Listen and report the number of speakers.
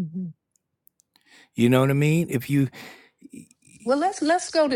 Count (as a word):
two